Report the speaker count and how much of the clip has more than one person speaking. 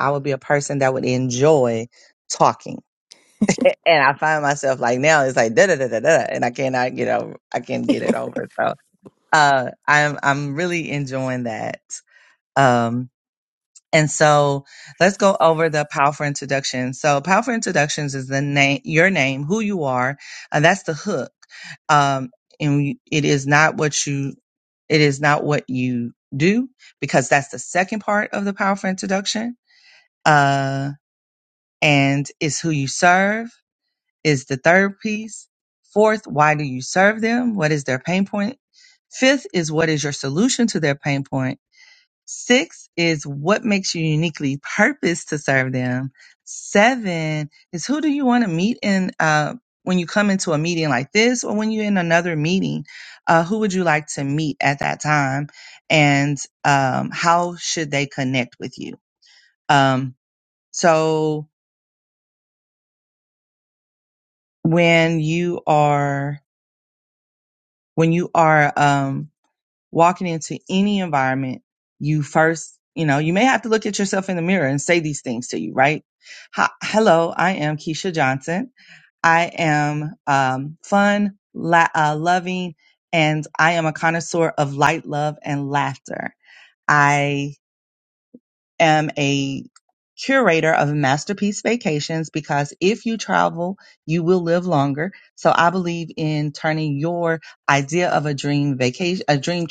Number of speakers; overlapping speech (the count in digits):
1, no overlap